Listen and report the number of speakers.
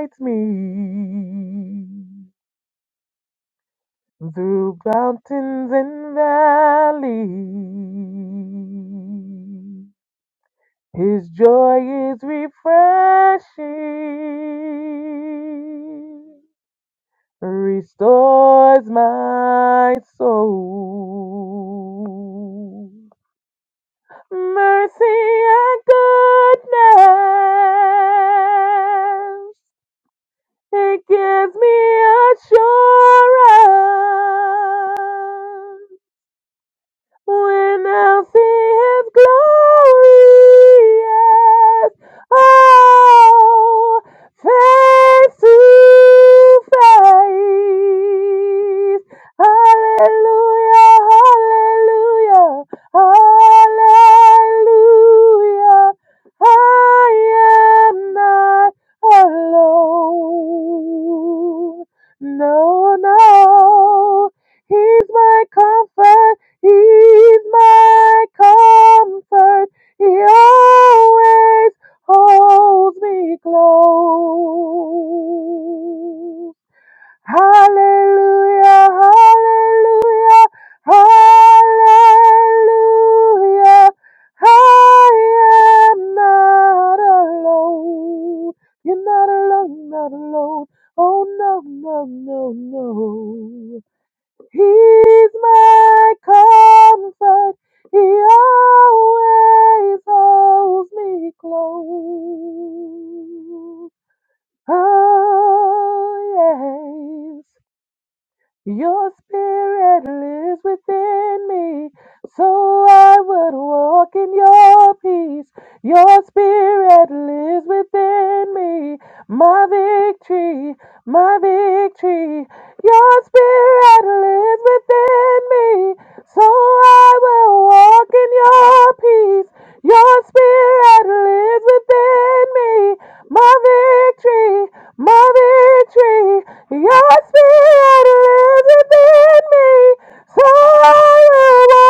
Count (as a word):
one